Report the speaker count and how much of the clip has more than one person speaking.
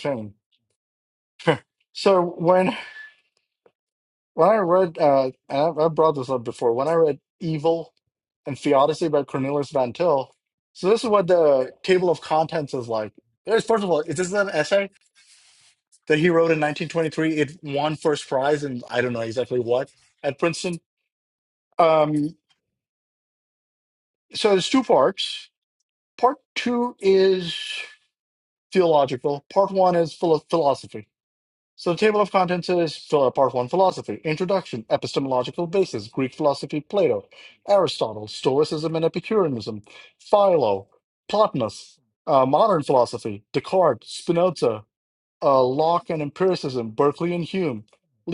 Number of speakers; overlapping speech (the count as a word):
one, no overlap